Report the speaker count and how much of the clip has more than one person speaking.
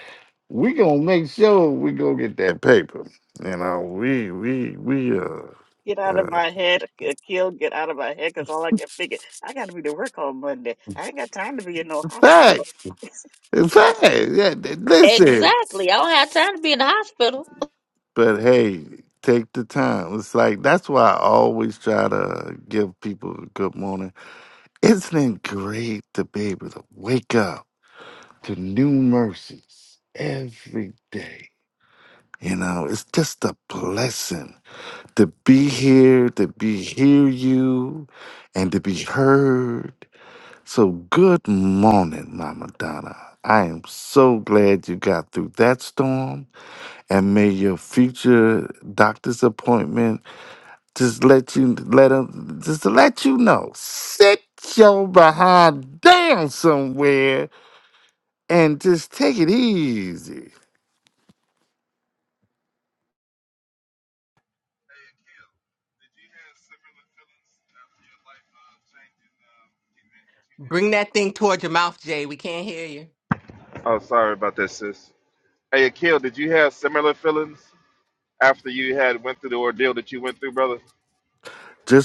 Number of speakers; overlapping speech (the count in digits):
5, about 2%